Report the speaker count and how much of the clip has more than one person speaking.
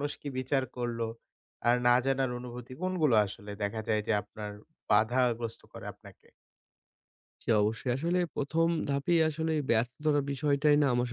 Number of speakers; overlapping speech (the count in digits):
2, no overlap